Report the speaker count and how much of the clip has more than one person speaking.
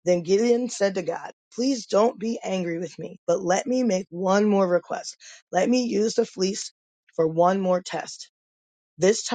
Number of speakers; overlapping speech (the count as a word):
one, no overlap